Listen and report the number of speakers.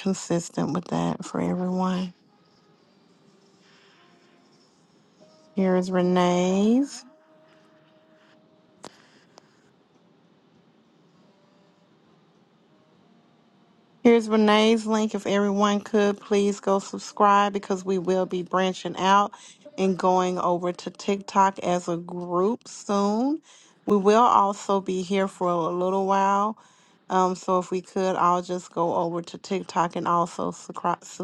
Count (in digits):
1